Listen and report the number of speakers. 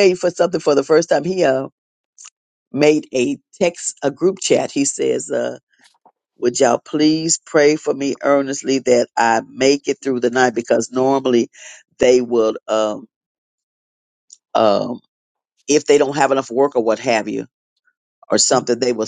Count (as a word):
one